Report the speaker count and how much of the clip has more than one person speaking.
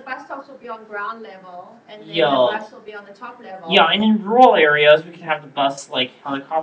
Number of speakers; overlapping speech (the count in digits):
2, about 12%